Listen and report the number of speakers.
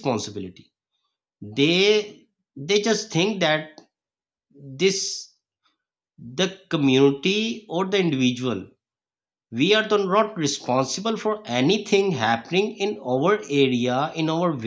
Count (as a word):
one